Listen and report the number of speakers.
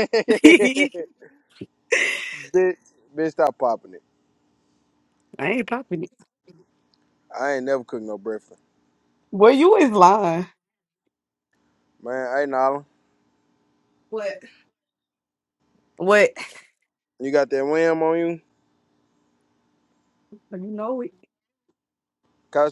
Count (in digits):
2